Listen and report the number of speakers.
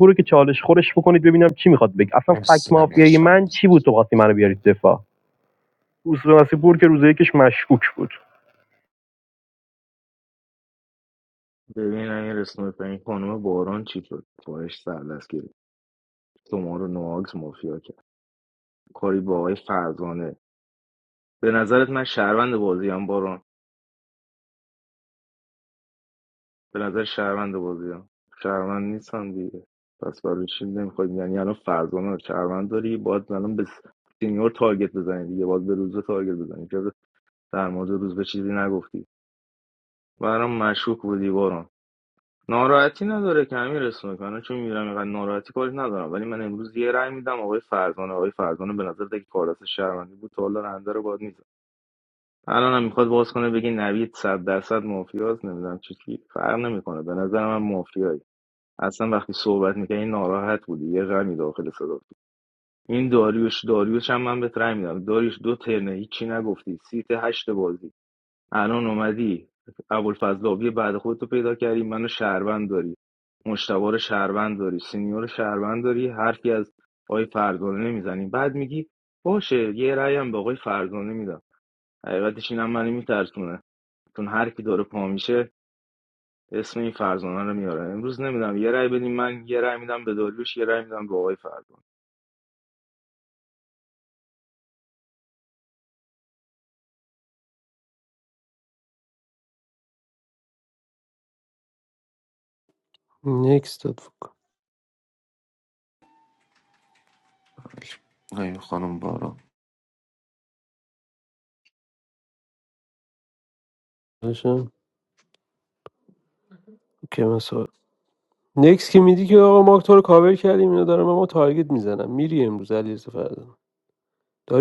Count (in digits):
4